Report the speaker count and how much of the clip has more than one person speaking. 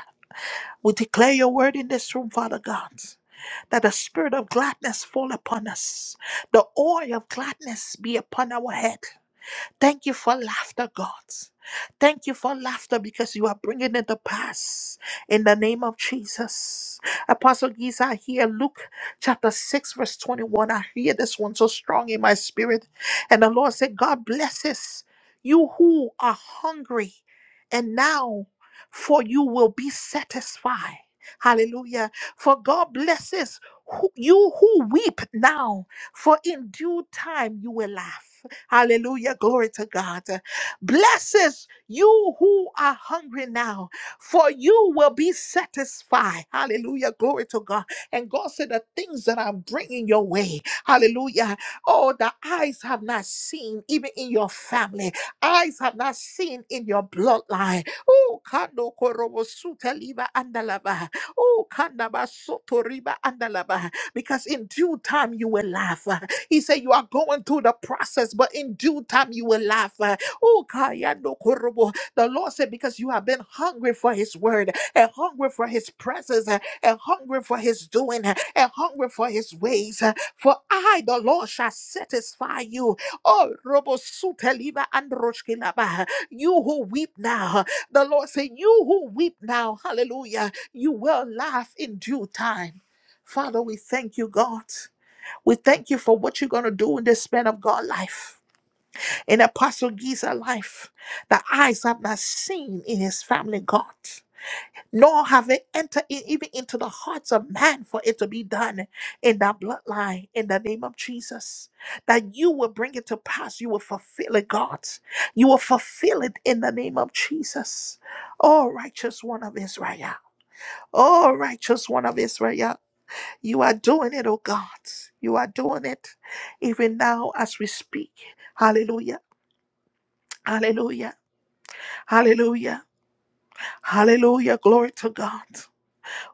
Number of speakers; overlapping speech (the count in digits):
1, no overlap